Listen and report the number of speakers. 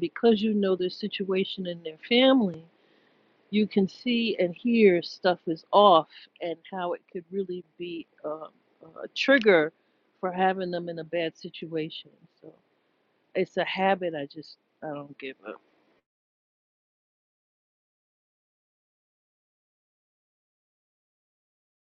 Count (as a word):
one